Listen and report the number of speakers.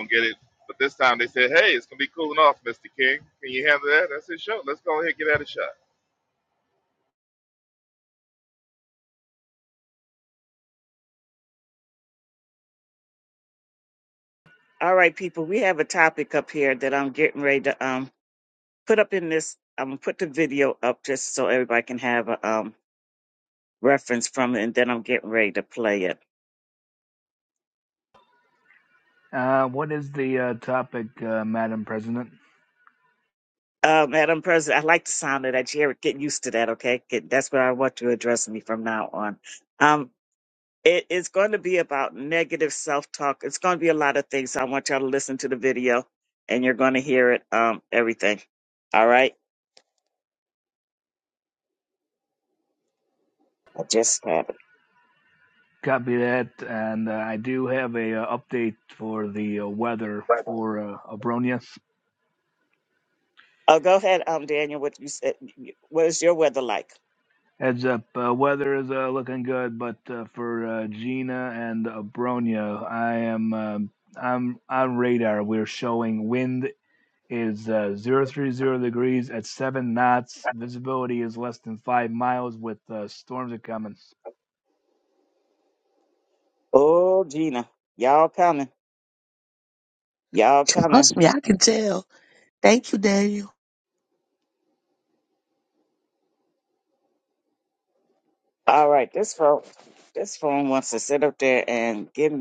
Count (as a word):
four